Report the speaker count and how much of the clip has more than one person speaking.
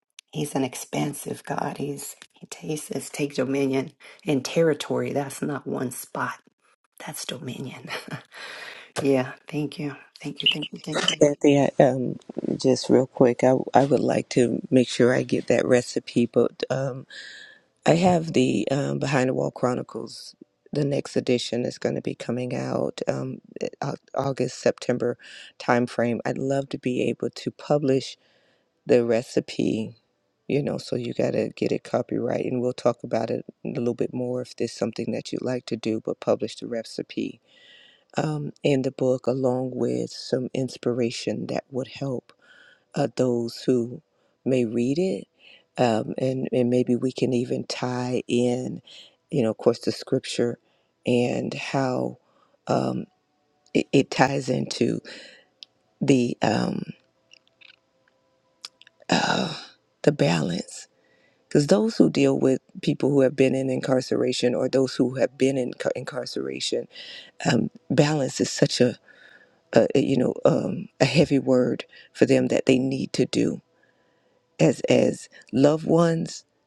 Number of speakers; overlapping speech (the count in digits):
2, no overlap